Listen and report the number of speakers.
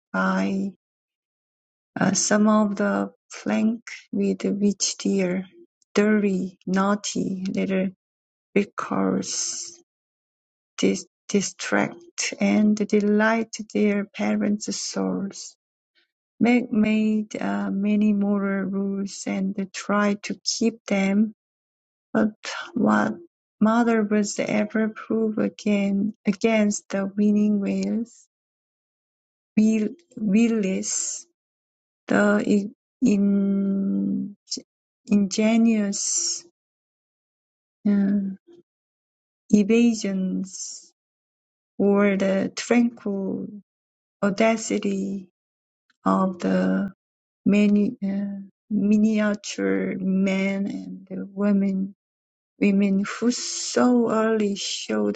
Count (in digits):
1